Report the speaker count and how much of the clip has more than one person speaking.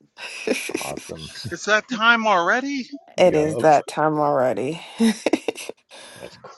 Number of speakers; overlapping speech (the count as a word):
three, about 11%